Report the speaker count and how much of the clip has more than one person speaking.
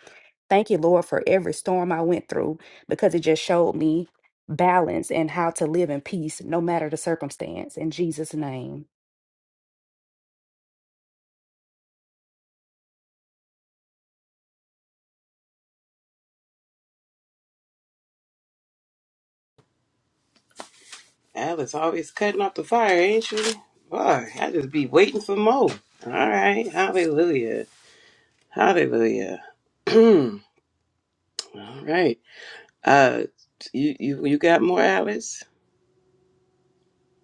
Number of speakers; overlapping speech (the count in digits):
2, no overlap